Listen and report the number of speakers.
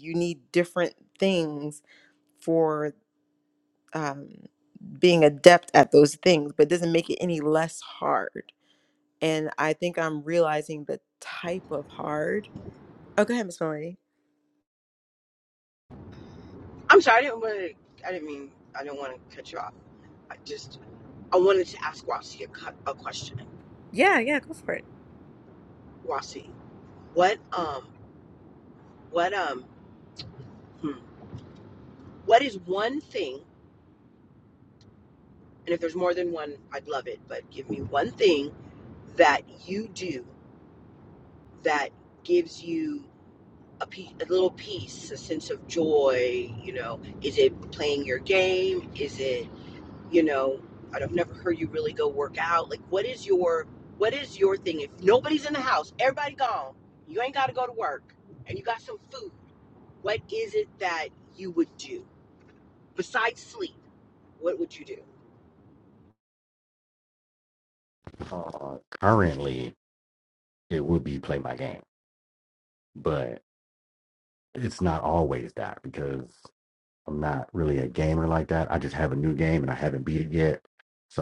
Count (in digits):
3